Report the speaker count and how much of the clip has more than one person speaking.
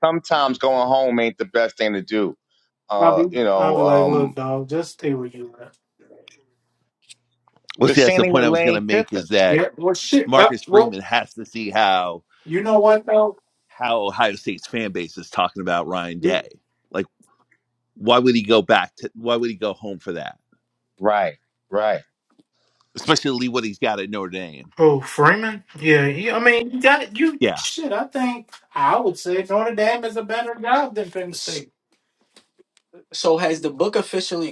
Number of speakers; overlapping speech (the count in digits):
4, about 12%